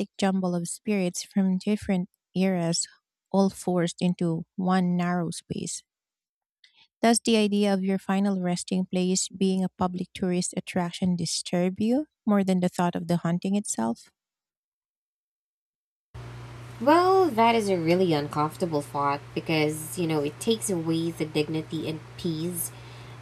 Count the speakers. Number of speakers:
2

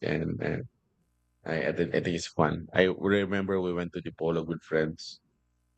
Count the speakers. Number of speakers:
1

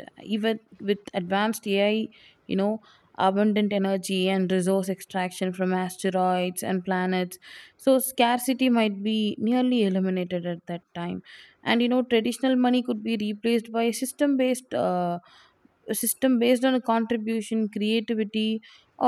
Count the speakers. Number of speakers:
1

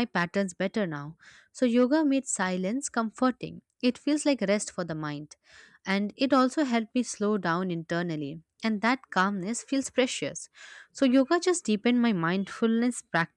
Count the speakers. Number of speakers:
1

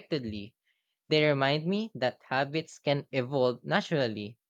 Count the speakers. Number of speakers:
1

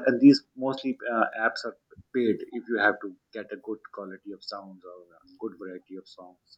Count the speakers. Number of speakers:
1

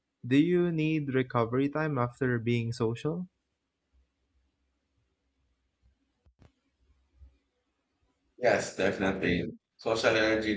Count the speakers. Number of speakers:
2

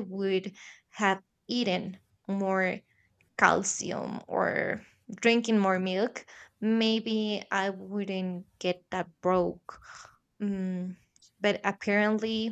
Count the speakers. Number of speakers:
1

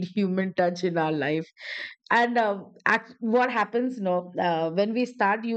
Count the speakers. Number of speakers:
1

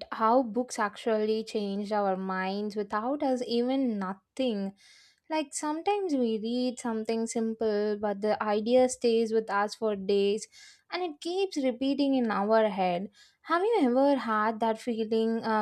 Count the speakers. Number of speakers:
1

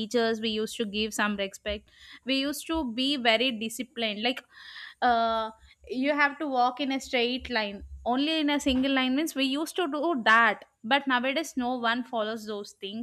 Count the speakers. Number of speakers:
1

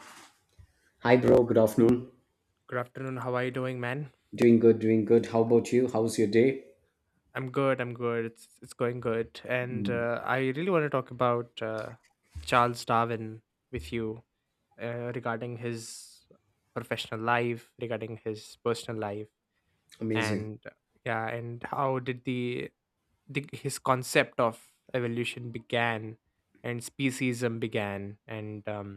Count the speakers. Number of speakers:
2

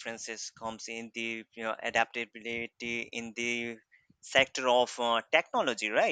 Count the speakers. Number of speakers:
1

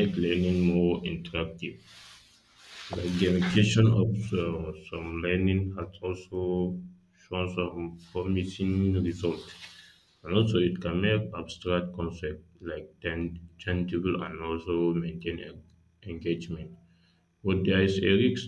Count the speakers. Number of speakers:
1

